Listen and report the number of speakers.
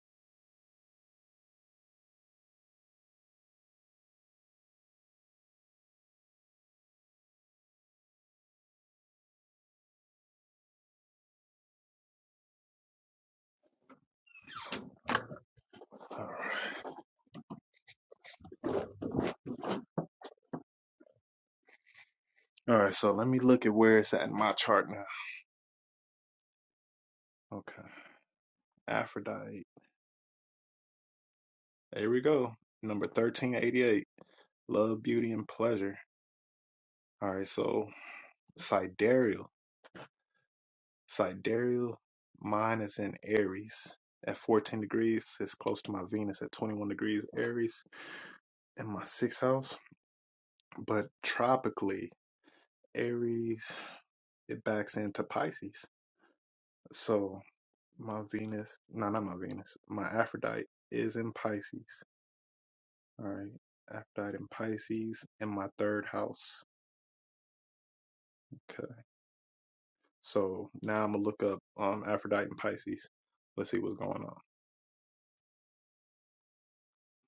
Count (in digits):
1